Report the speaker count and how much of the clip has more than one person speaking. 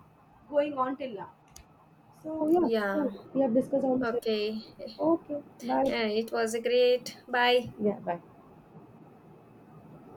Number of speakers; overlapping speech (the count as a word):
two, about 7%